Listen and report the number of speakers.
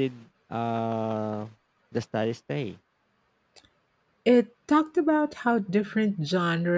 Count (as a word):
two